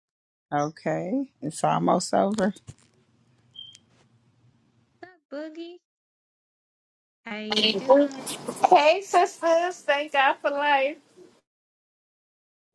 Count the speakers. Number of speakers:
3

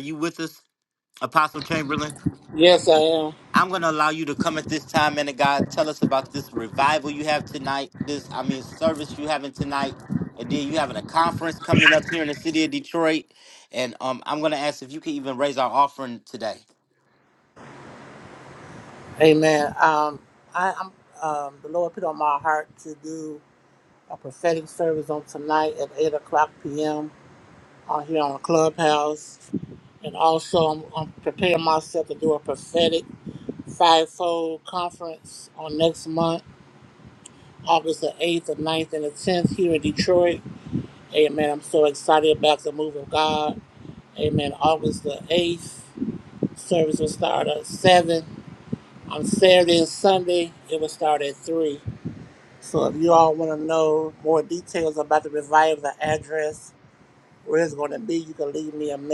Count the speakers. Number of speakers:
2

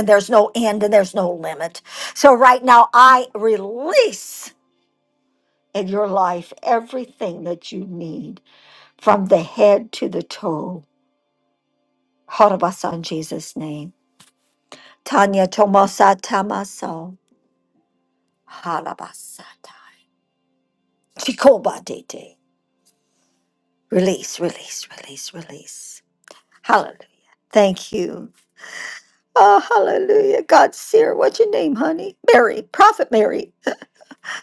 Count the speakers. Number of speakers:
1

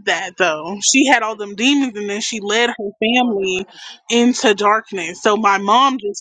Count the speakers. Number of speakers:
1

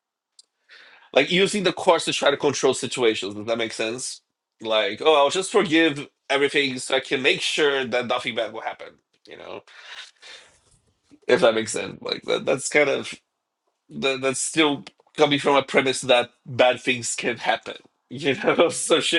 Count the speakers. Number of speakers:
1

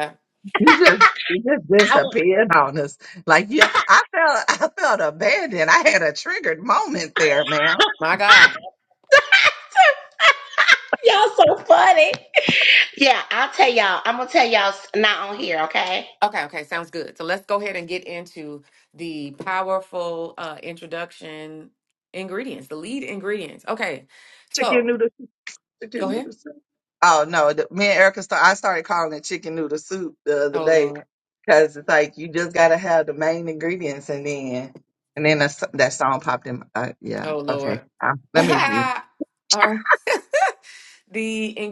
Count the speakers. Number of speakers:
3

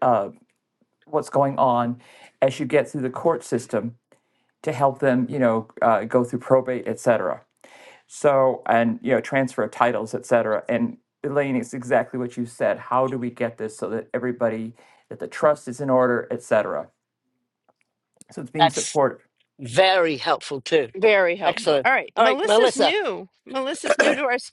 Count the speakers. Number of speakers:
3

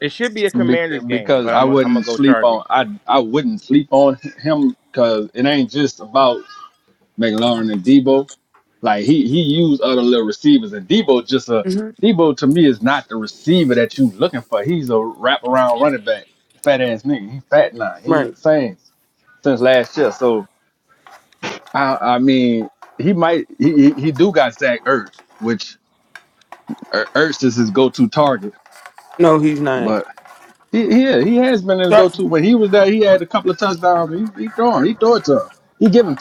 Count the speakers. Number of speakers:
3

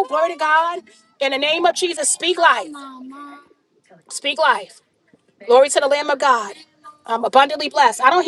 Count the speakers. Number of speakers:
1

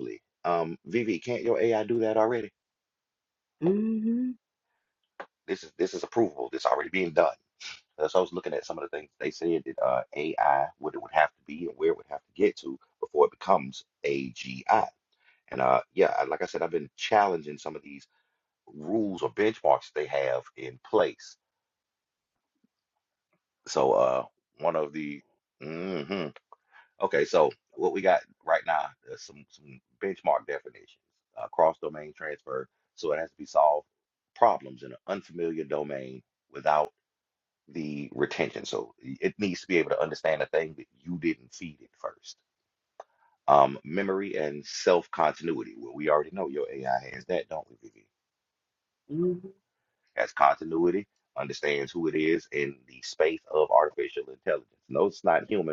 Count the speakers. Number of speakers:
2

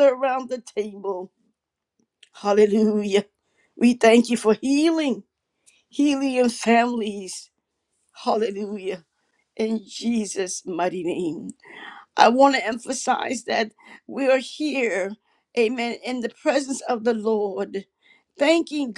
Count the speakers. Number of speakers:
1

